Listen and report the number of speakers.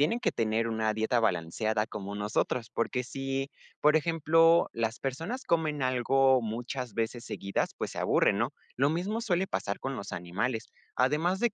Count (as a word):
one